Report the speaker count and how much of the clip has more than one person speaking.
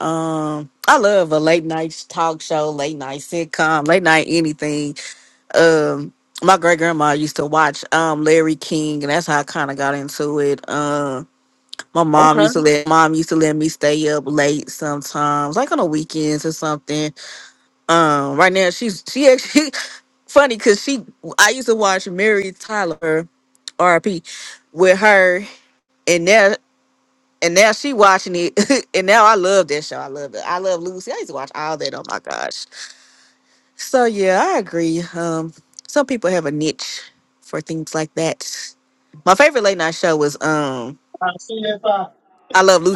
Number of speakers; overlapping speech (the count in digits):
2, about 1%